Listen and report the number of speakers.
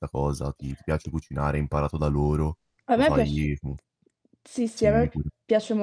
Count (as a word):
two